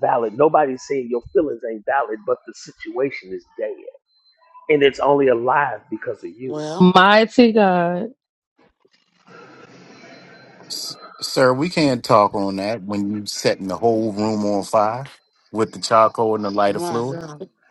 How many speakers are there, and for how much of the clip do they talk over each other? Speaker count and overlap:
4, about 4%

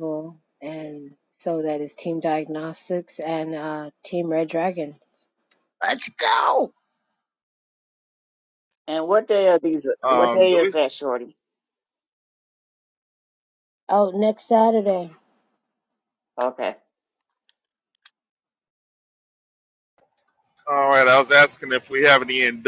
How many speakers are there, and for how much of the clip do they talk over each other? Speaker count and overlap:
3, about 3%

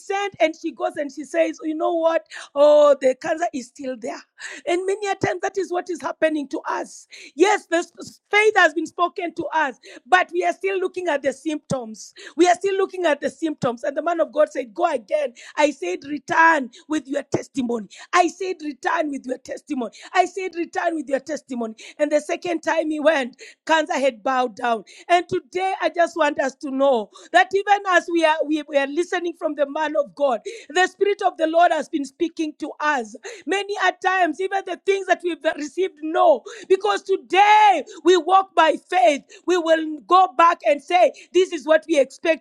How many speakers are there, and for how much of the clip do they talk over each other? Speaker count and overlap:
1, no overlap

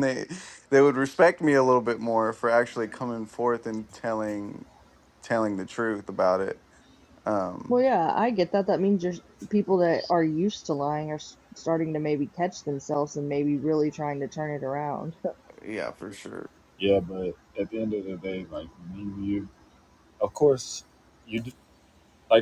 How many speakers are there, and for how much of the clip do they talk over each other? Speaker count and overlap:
3, no overlap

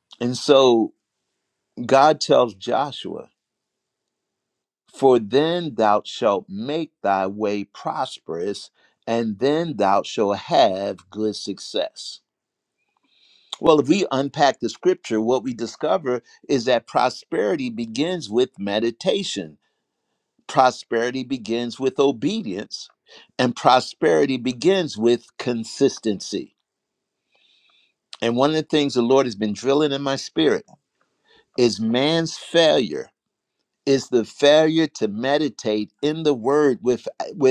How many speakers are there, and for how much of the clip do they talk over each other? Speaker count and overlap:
1, no overlap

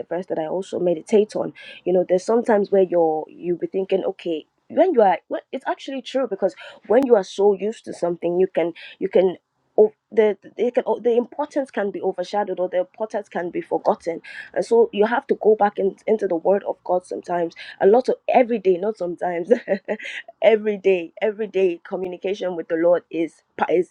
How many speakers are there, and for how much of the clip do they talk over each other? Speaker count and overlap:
1, no overlap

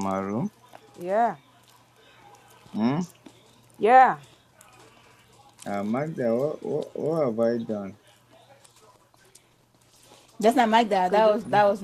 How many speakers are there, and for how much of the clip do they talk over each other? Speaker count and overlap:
3, about 4%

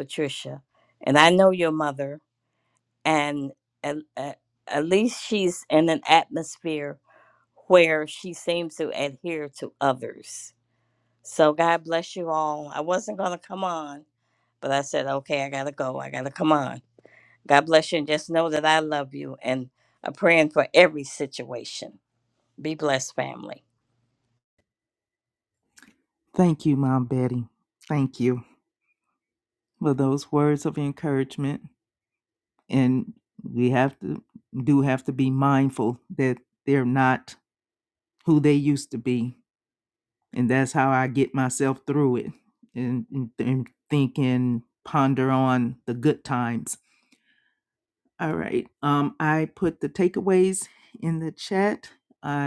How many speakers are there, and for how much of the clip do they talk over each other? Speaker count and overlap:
2, no overlap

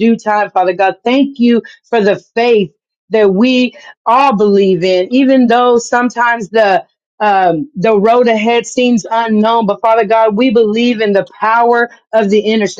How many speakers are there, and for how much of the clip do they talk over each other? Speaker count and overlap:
1, no overlap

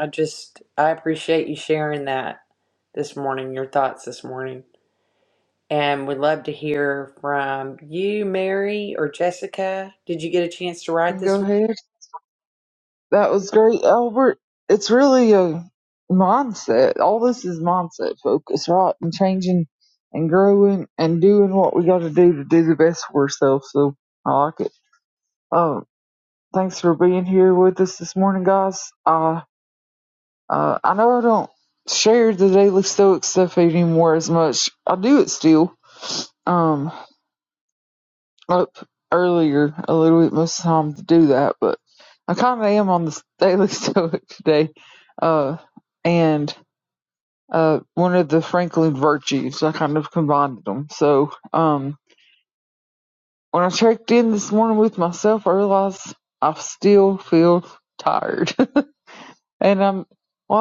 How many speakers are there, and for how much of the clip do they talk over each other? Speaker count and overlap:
2, about 1%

